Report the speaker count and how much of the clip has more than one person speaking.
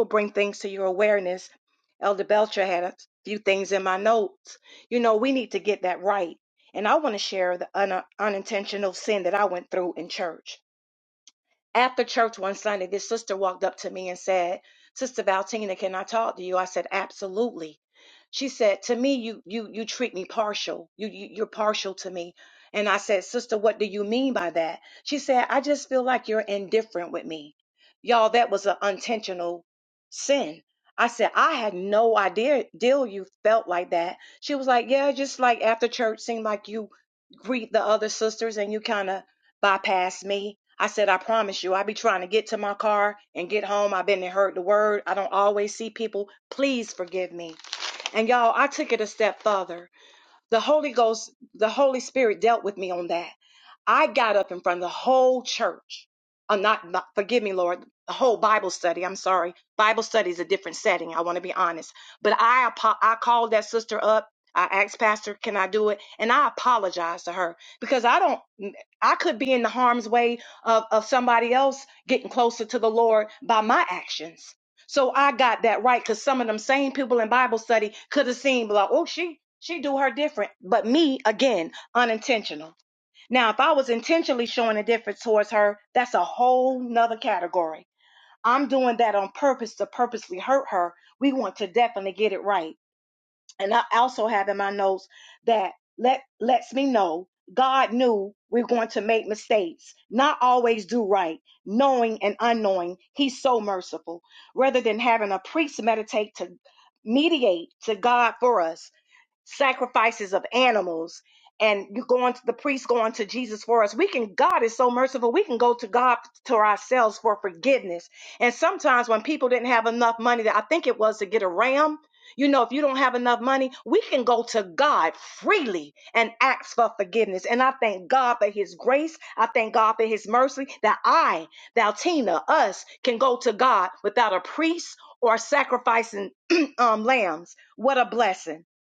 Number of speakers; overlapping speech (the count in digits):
1, no overlap